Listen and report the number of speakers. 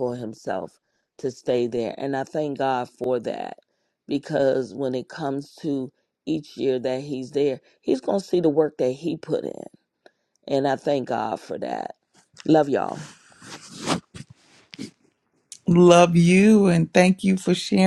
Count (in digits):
2